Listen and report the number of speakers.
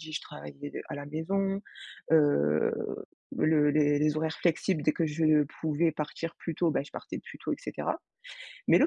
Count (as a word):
one